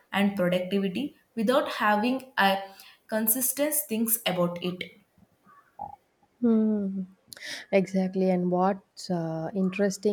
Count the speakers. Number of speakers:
2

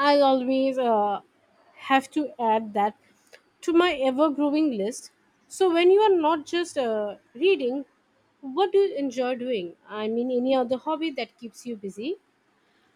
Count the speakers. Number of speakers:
1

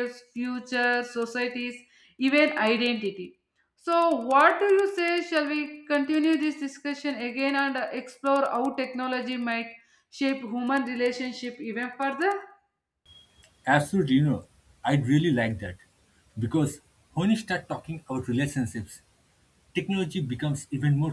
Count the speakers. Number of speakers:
2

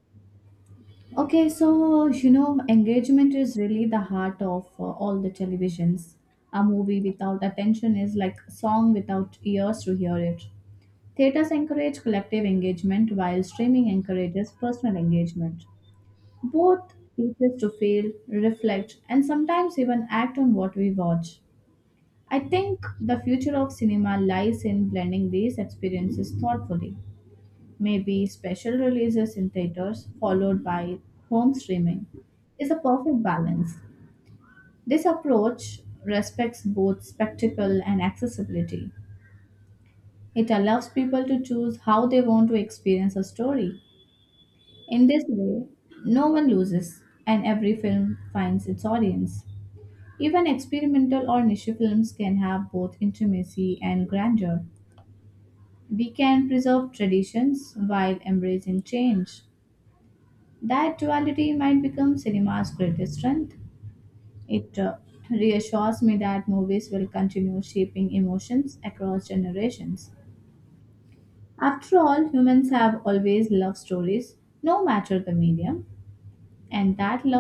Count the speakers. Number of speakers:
1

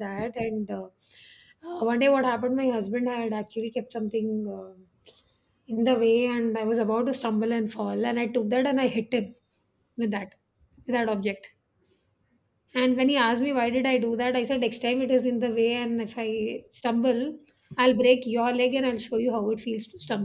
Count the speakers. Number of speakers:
1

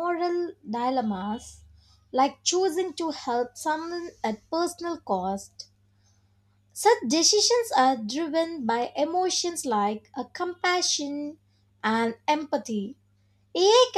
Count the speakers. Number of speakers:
1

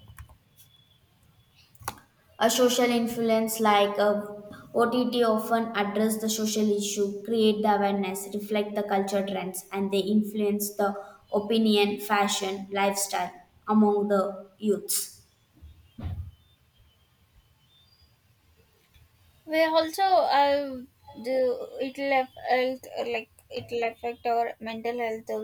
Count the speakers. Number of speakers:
2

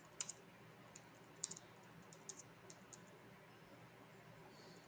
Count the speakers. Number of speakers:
0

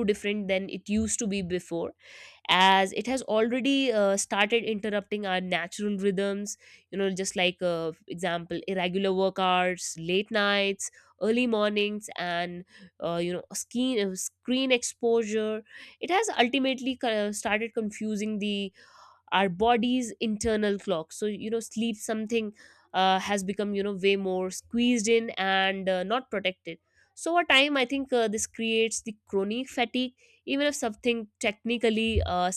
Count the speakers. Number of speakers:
1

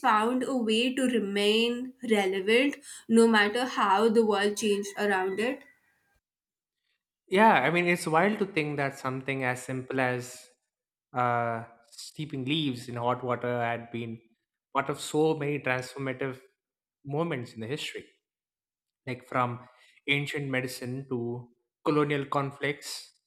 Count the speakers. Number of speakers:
2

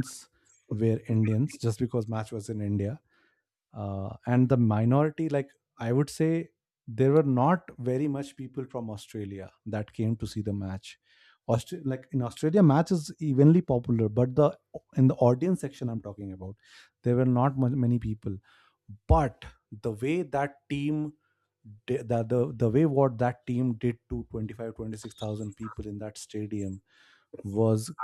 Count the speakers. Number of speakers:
1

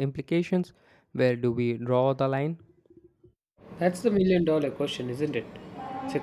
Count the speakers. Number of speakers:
2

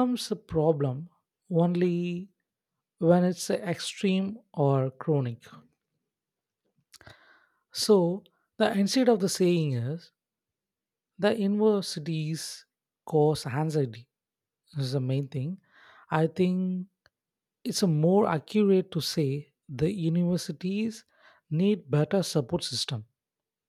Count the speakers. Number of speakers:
1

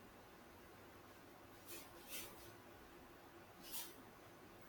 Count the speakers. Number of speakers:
0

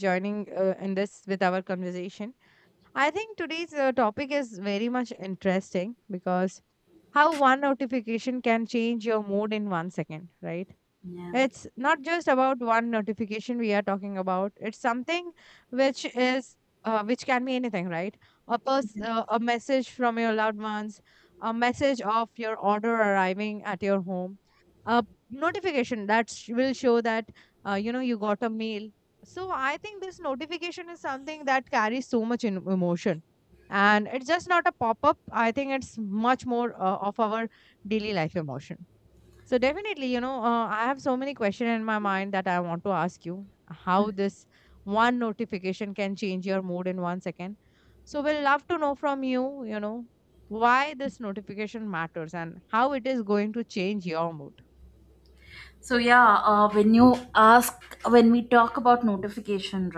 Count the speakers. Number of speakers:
2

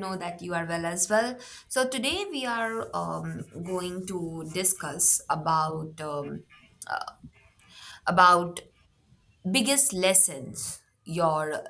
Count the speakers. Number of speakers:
1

